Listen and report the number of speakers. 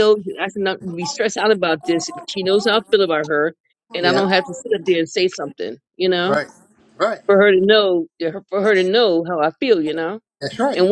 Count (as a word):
two